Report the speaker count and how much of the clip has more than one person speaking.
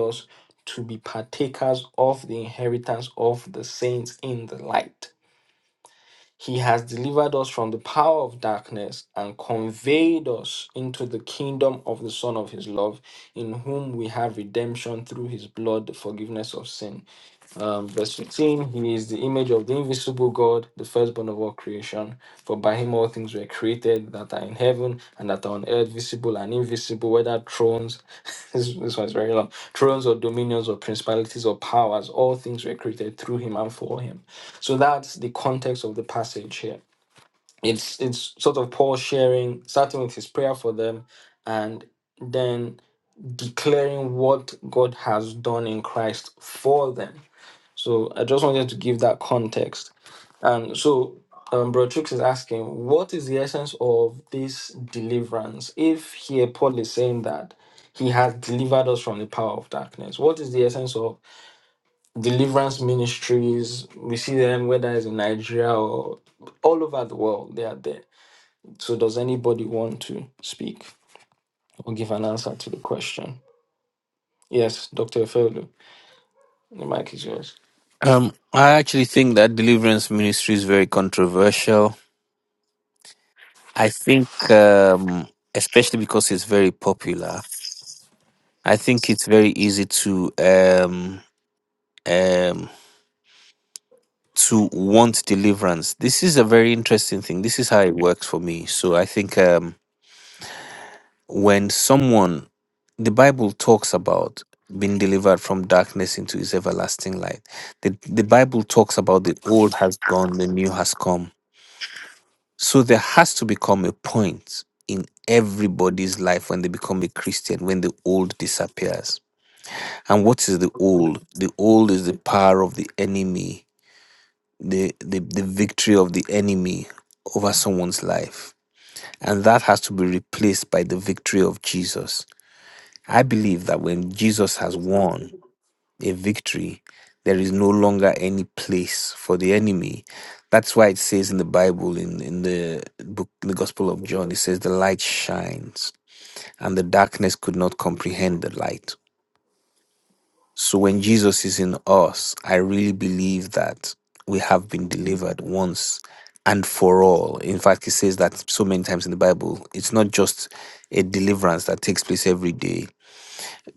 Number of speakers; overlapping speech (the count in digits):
2, no overlap